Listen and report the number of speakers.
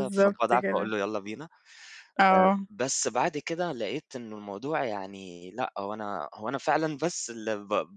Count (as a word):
two